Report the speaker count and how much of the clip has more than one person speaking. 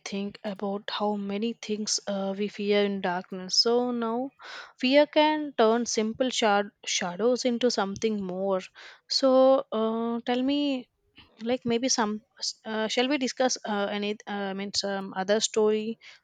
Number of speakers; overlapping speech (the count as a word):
one, no overlap